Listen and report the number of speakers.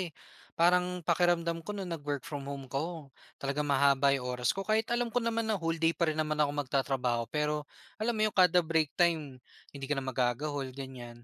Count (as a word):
one